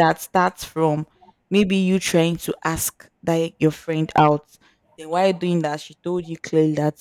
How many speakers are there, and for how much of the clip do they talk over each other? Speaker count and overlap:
1, no overlap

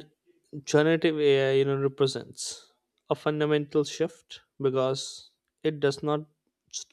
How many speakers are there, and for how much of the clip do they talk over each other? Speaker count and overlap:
1, no overlap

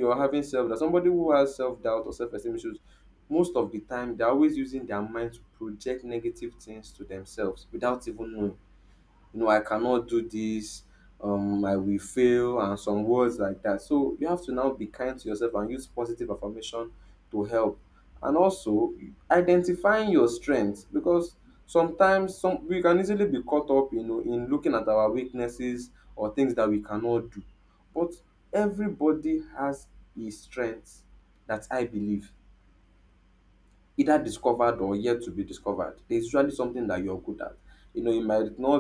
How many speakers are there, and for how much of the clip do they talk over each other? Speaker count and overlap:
1, no overlap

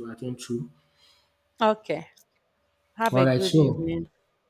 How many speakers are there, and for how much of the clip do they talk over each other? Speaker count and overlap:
2, about 18%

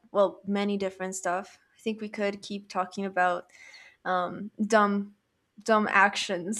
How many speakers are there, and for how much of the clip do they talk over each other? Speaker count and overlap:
1, no overlap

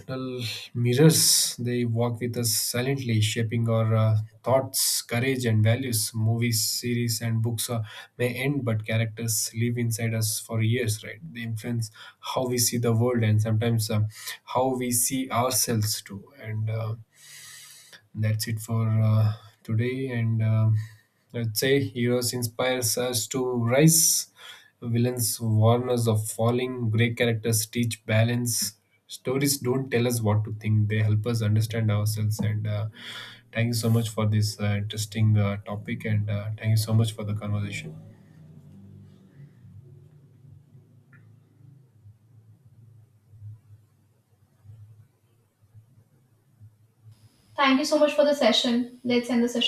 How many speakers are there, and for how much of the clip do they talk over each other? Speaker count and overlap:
2, no overlap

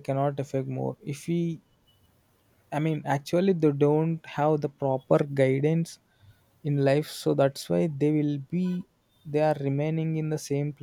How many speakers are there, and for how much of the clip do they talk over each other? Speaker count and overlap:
1, no overlap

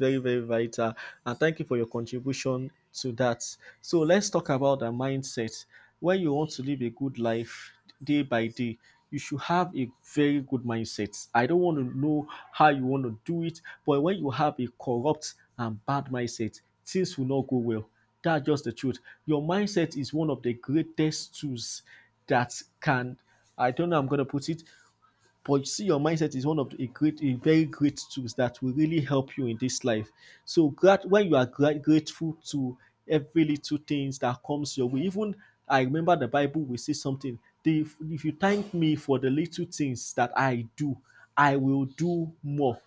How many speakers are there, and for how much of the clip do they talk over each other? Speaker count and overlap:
1, no overlap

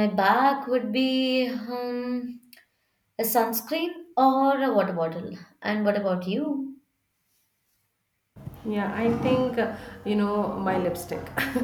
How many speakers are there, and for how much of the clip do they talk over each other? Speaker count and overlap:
2, no overlap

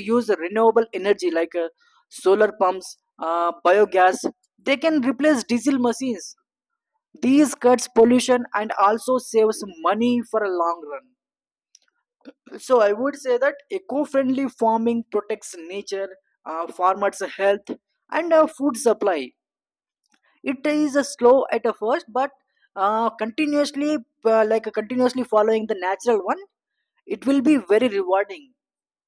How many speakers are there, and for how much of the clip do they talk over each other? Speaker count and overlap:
1, no overlap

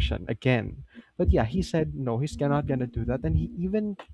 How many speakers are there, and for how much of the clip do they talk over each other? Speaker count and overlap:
1, no overlap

